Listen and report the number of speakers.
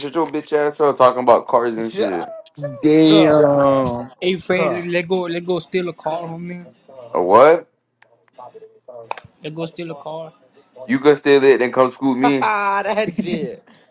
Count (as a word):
four